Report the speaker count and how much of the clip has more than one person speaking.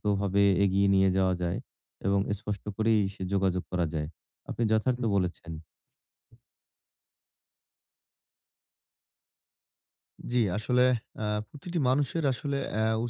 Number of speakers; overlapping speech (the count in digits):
2, about 1%